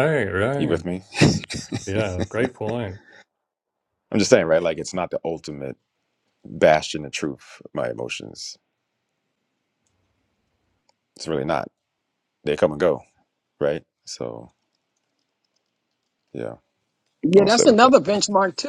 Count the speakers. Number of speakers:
three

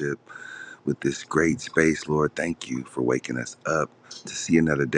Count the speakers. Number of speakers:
one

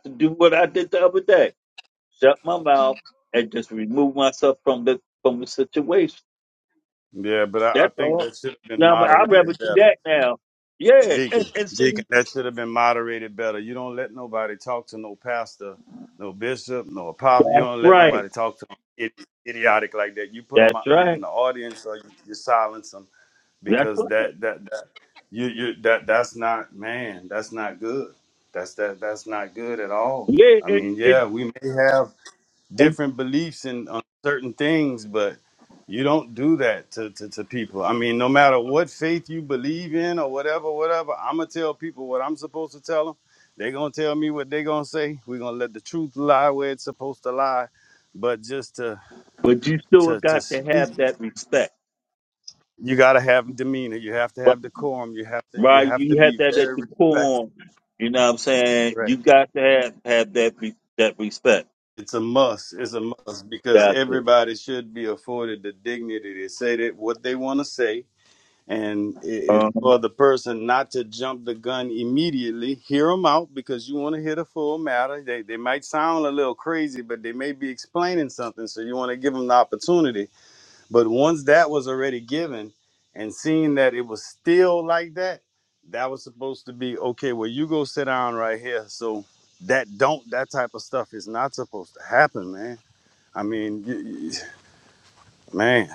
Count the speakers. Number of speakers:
two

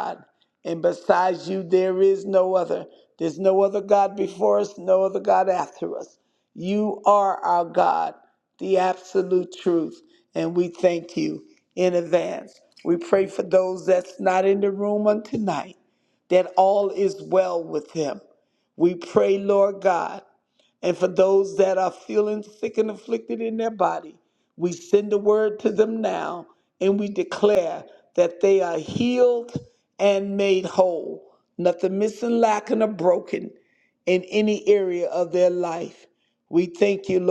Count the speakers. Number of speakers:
one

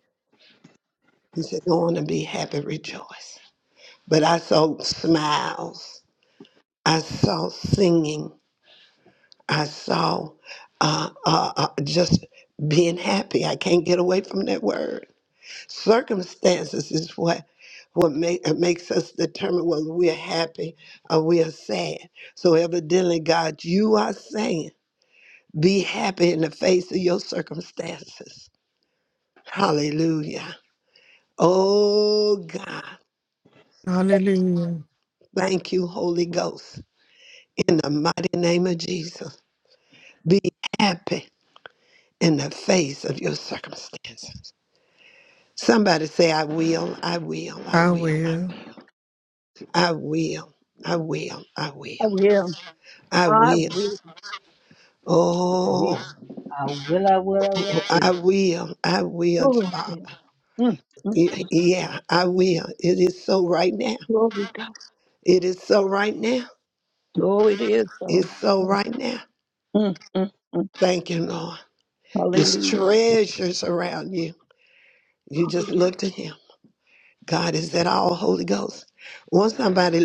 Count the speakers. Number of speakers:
four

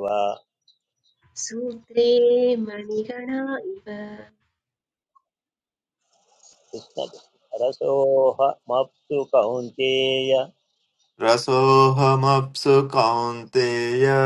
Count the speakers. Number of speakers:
three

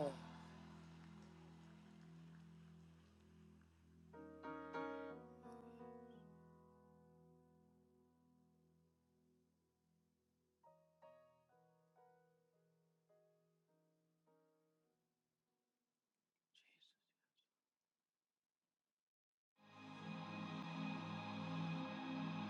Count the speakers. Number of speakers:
zero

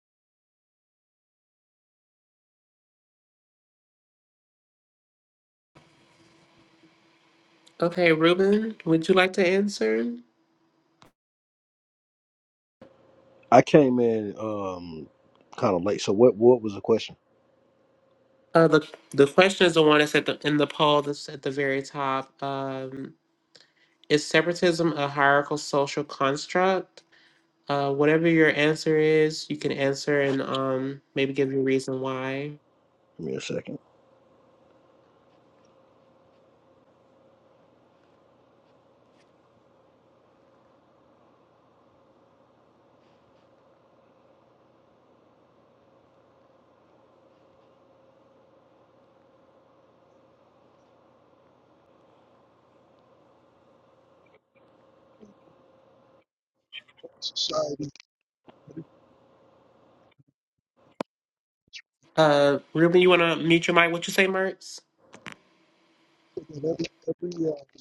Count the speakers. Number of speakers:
three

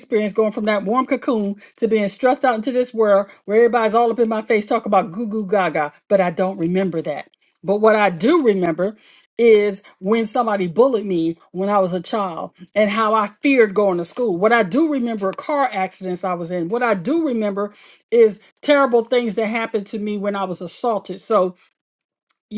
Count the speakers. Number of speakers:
one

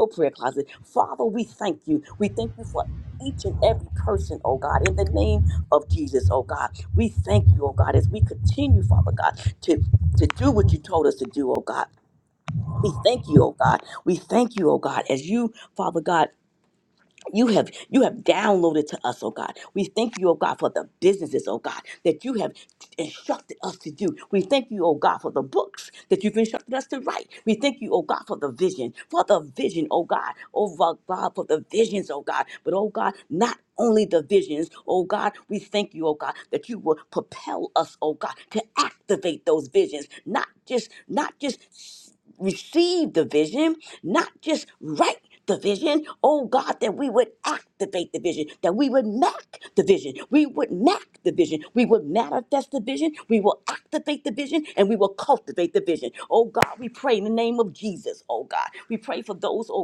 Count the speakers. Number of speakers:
one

